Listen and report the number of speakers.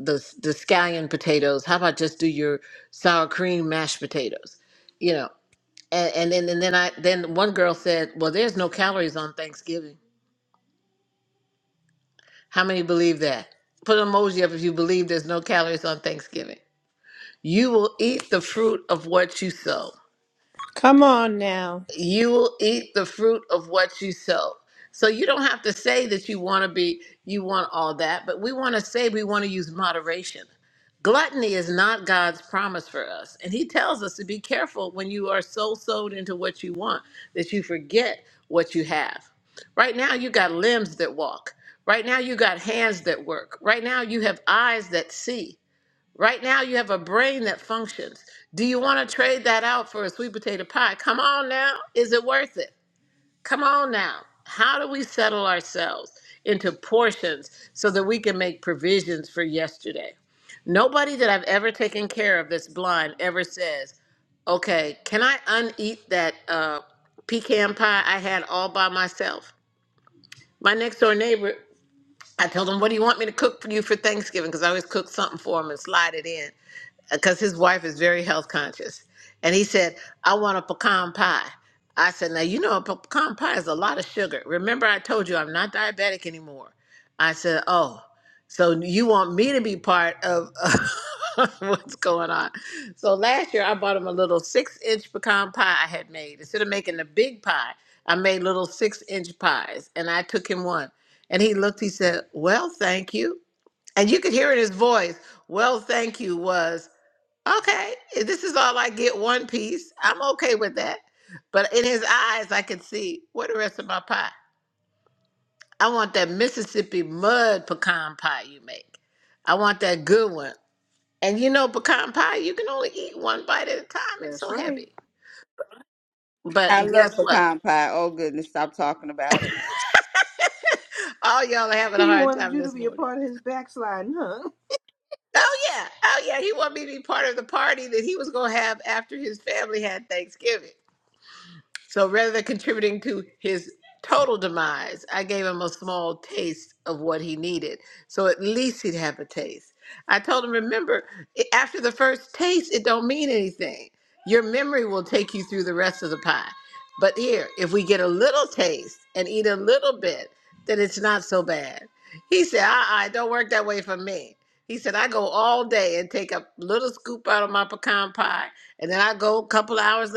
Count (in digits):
4